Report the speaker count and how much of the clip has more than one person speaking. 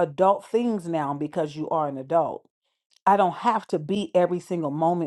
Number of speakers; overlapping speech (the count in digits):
1, no overlap